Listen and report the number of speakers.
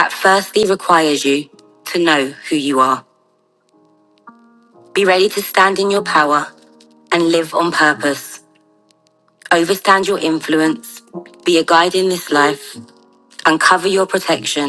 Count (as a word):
one